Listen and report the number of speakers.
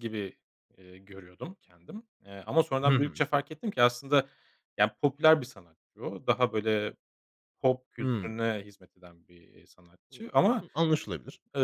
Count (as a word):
two